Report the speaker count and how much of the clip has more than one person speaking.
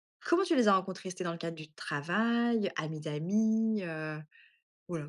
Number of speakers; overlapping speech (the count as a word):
one, no overlap